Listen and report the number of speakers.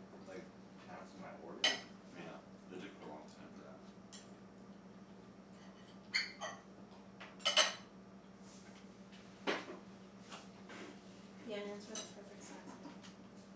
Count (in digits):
3